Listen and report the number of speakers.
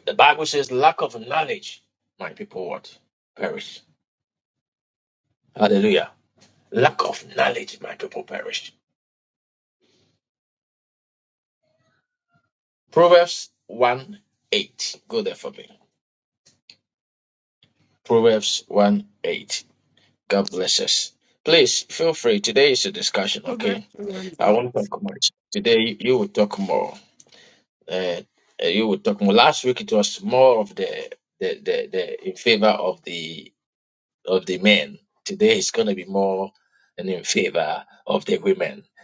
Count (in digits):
2